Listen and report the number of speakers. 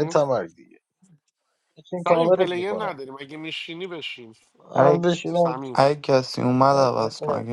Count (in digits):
3